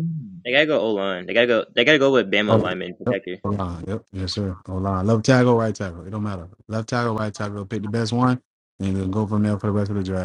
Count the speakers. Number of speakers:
two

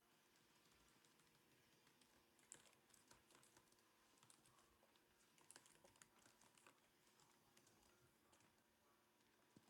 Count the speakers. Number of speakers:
zero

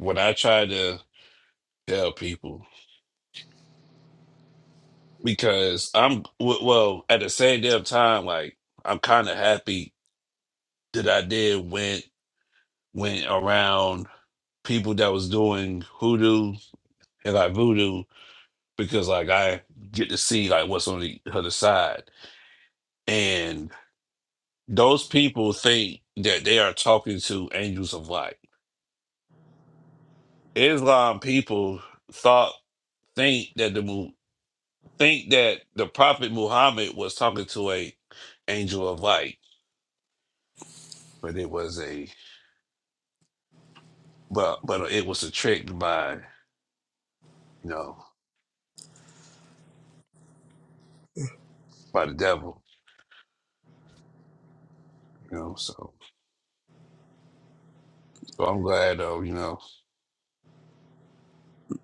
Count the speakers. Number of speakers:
one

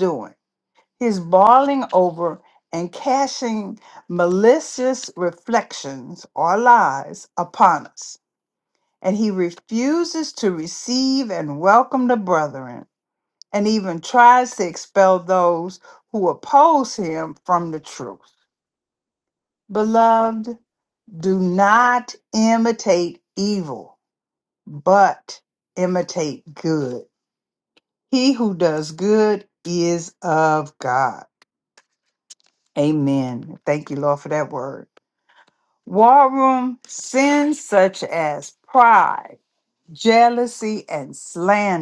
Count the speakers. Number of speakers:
one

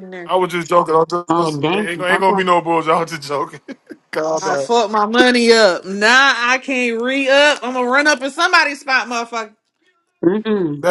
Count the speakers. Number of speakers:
three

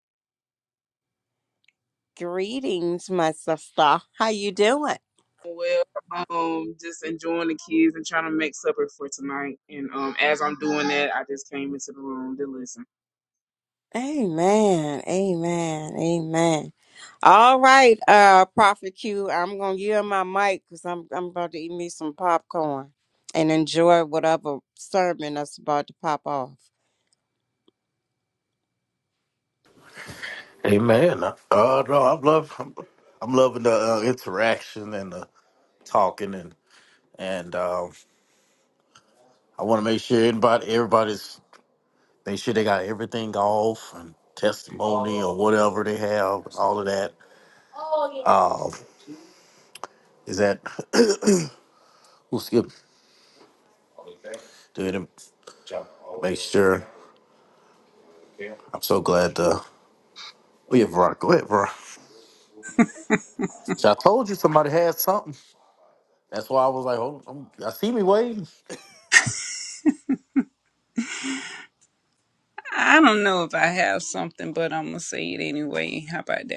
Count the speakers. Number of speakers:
four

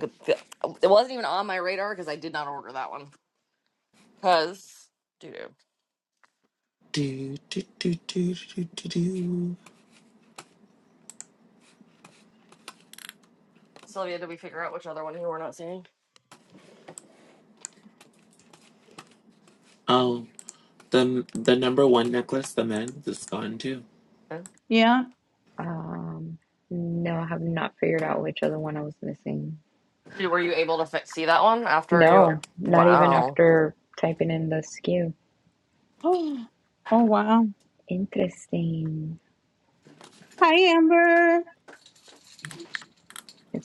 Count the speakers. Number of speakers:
four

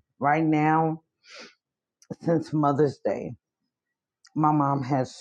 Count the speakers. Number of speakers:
one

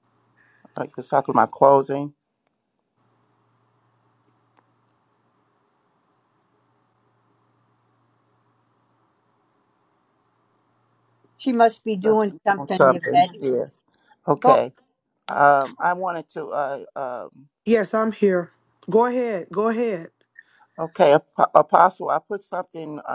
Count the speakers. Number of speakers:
three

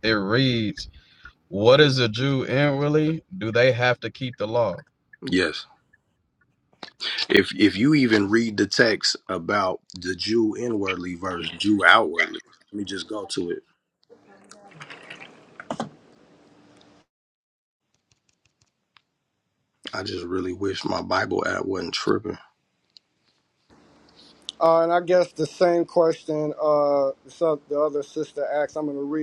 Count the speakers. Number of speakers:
three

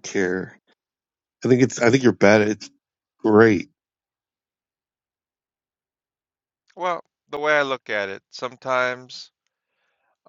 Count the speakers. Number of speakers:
two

